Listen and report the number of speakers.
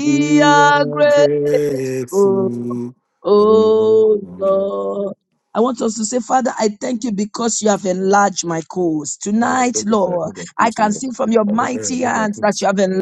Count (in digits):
2